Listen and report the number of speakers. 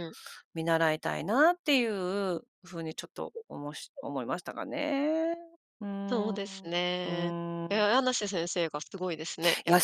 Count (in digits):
2